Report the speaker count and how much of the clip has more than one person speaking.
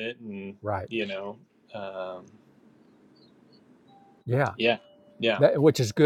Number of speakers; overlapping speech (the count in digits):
2, about 1%